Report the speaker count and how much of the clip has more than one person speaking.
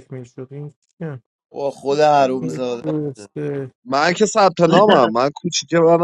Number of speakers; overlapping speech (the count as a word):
three, about 8%